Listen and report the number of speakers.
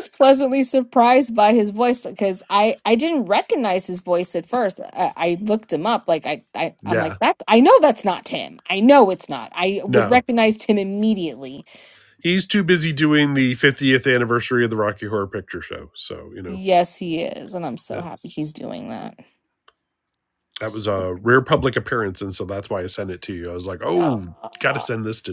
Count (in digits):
2